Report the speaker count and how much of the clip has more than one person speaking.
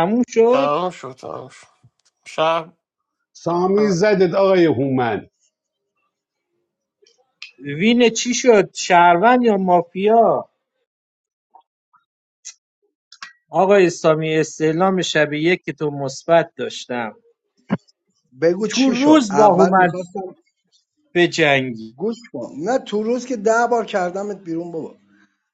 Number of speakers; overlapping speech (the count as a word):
four, about 6%